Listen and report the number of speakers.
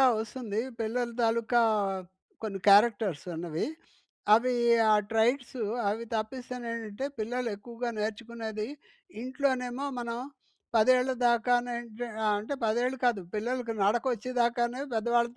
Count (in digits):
1